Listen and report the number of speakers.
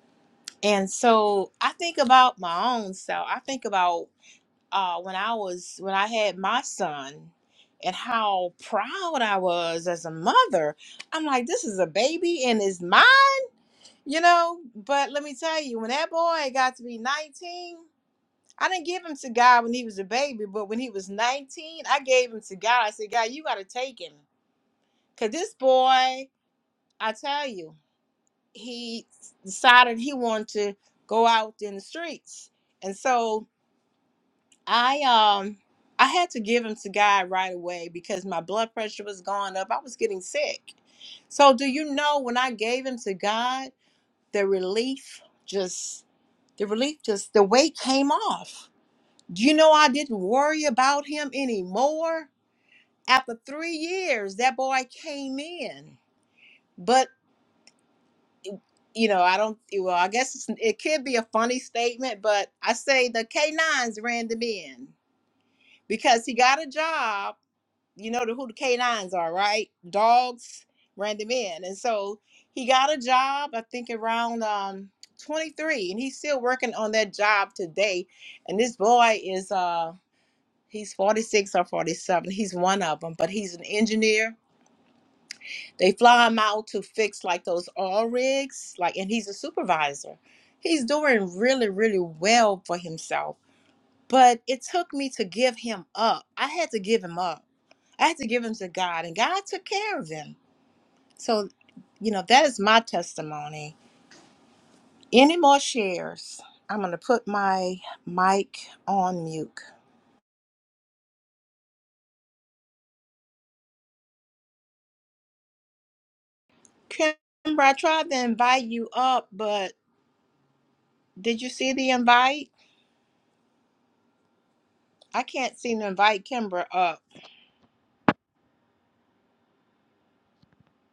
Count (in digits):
1